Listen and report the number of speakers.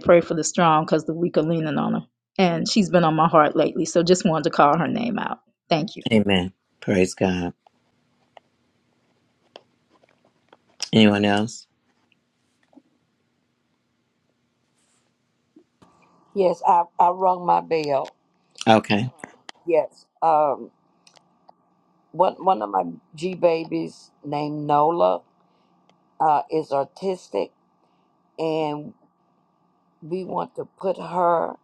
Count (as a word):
three